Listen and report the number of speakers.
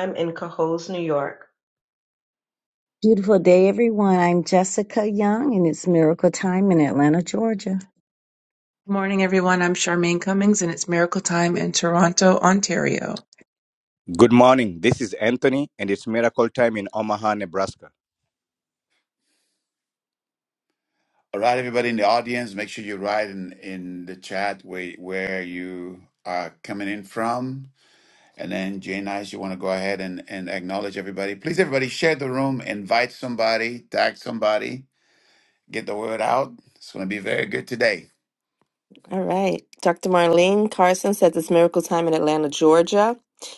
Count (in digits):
6